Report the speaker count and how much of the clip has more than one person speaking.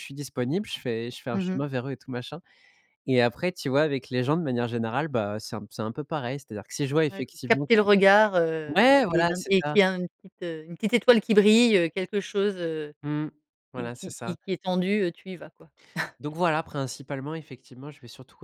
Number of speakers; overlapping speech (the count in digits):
2, about 15%